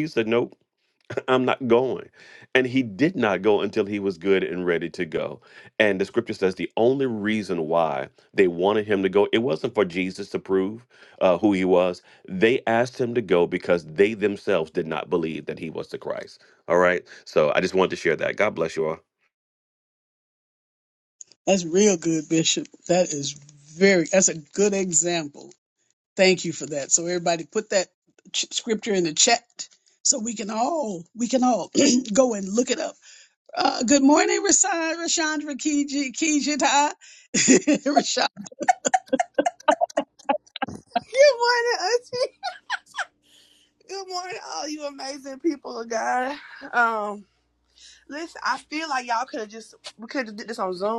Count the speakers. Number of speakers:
three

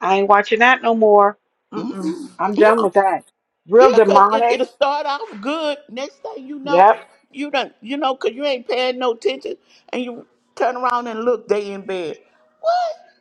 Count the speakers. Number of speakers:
two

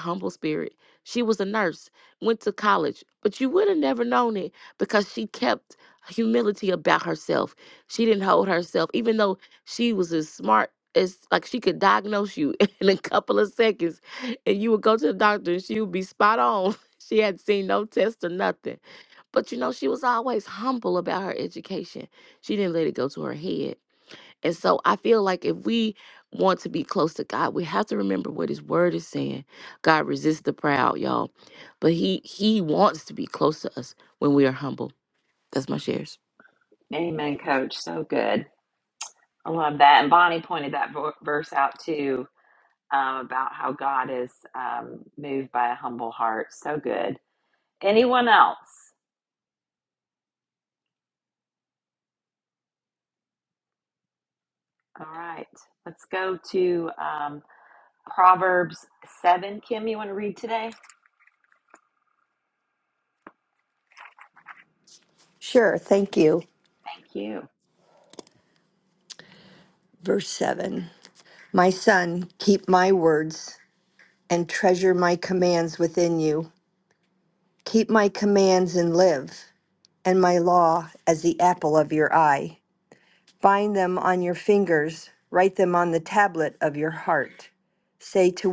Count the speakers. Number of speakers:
three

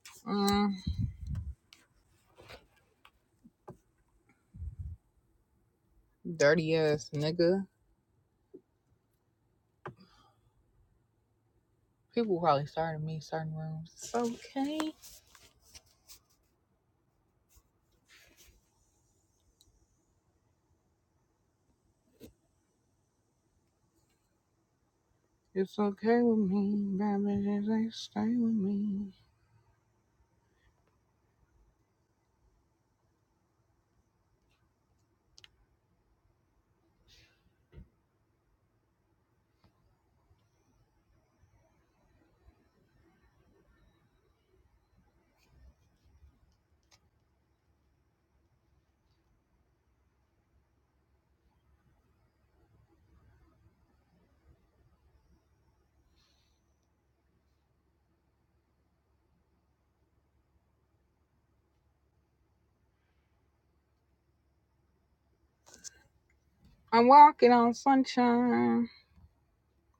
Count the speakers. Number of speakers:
one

